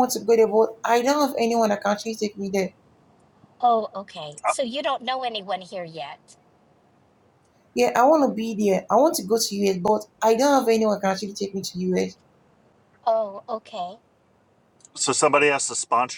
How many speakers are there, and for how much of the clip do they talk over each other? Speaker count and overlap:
three, no overlap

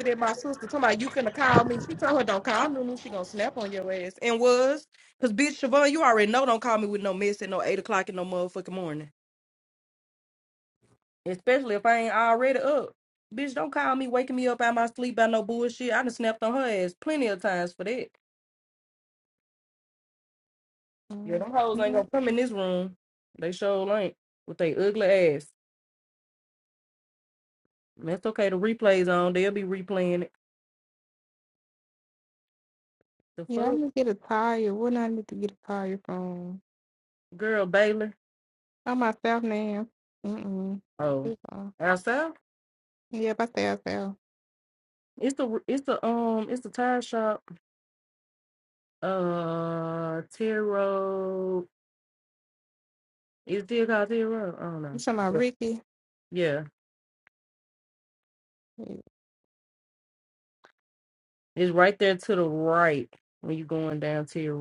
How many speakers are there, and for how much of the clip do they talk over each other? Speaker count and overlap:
two, about 1%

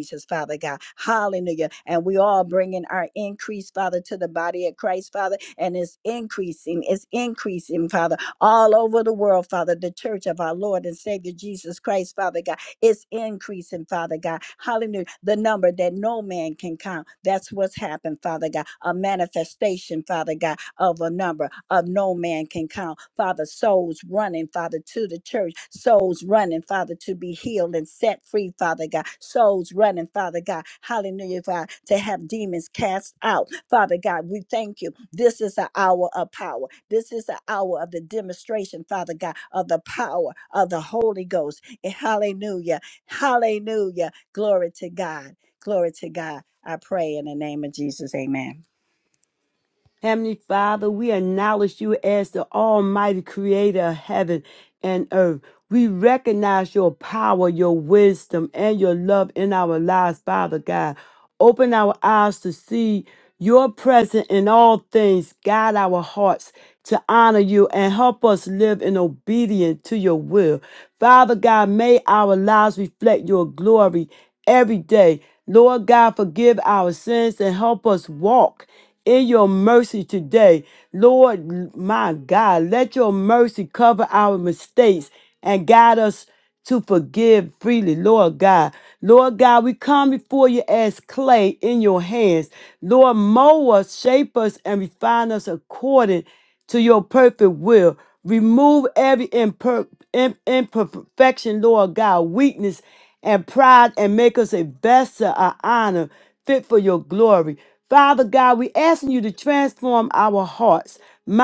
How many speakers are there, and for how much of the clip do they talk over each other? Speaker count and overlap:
two, no overlap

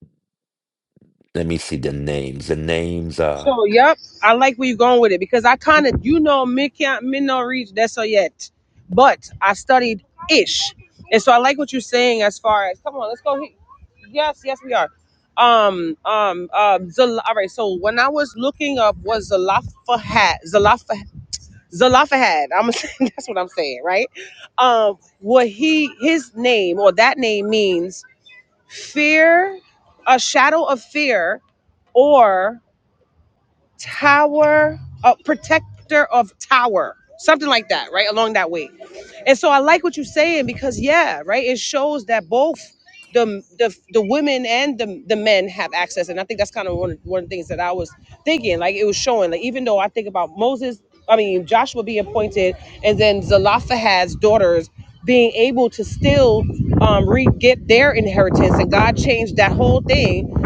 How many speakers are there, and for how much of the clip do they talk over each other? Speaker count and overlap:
two, under 1%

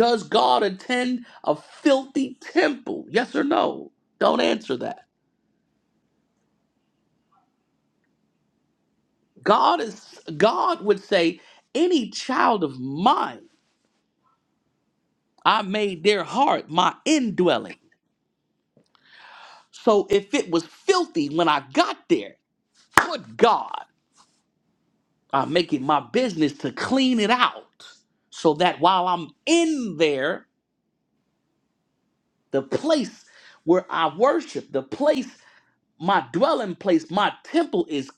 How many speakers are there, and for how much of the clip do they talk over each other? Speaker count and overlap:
one, no overlap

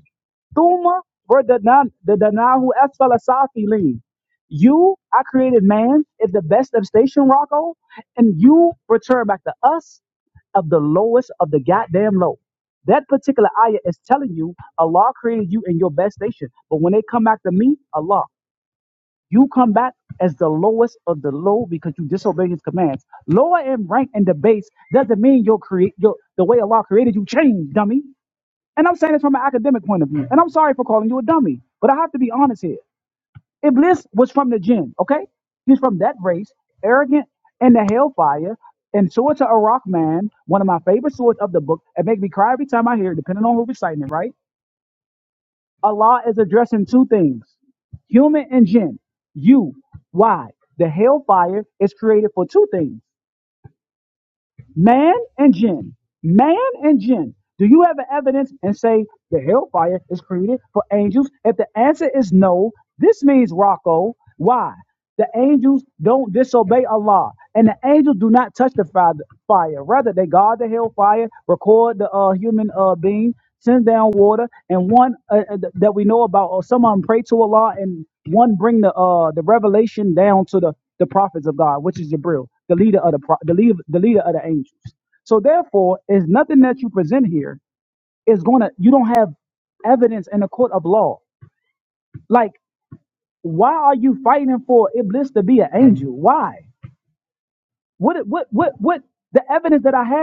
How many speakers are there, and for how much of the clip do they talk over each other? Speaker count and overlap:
one, no overlap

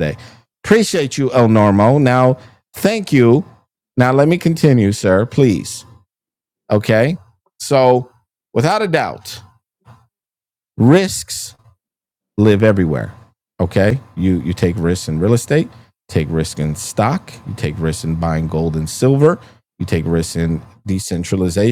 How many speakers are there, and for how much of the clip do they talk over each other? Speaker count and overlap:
one, no overlap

